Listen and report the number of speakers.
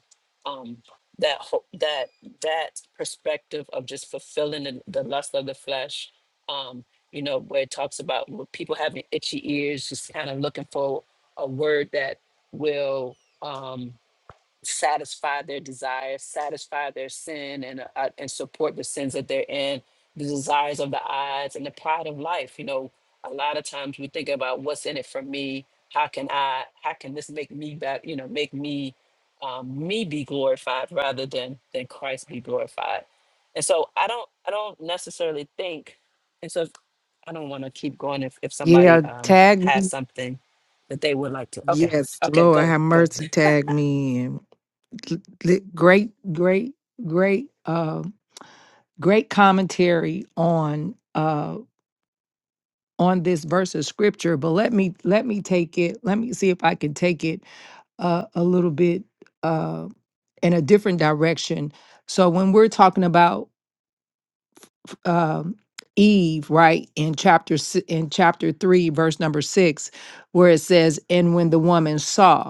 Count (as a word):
two